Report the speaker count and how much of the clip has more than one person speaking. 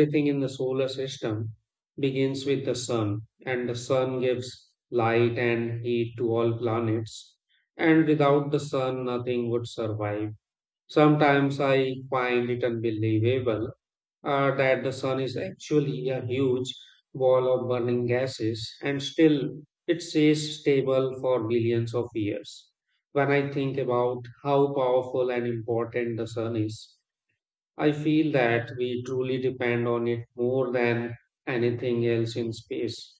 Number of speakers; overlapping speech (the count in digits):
1, no overlap